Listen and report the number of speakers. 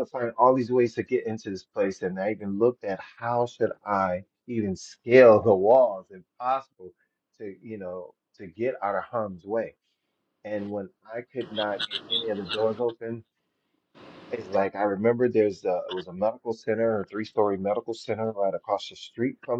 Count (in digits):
1